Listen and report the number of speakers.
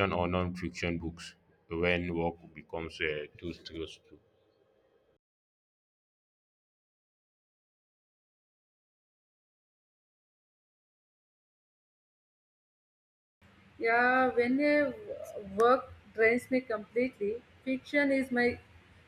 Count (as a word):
two